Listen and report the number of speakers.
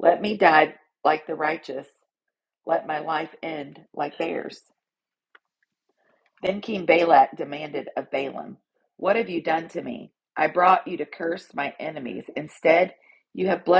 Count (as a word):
one